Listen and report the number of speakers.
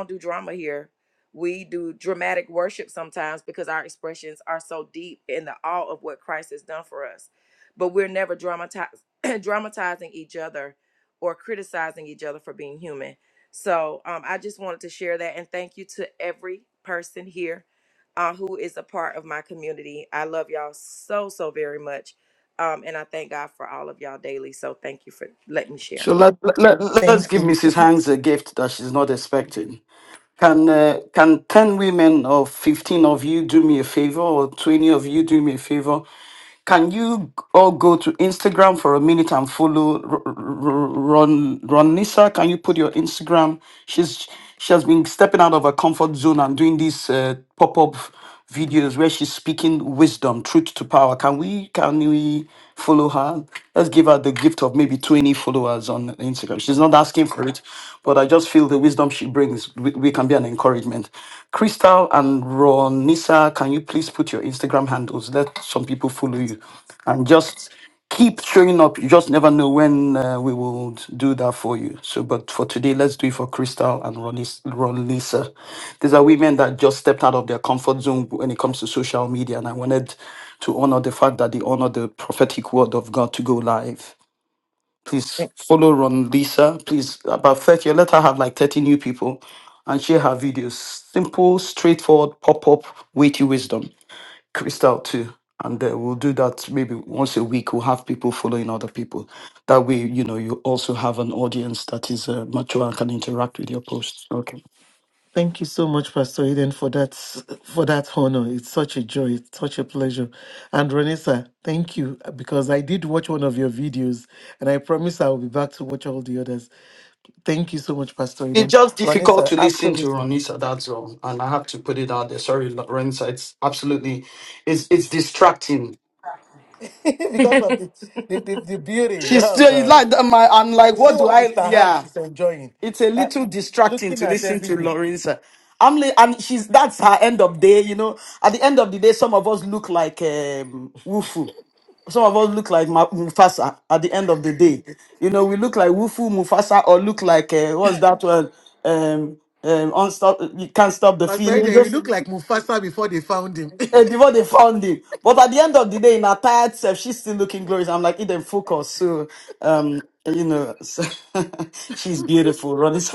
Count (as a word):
three